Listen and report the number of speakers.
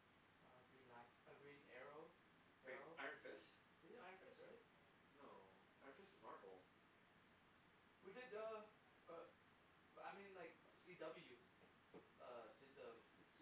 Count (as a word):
two